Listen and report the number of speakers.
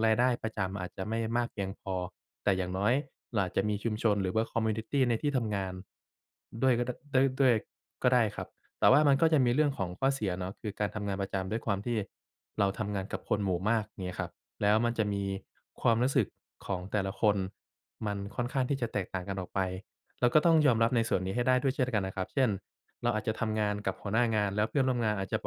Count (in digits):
1